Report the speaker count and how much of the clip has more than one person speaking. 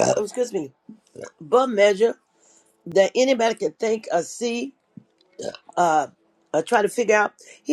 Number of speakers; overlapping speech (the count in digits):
1, no overlap